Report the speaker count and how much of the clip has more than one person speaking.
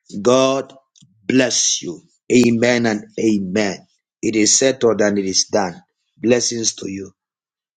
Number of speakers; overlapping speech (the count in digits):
1, no overlap